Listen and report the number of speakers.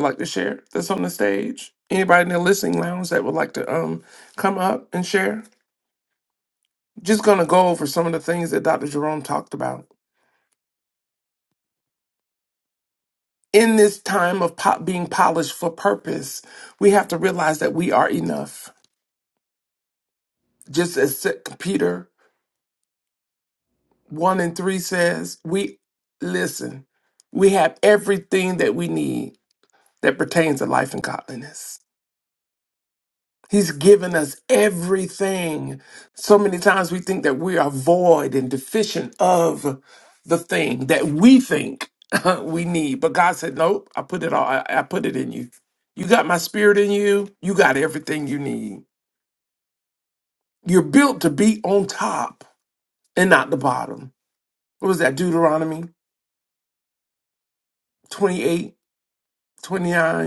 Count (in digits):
1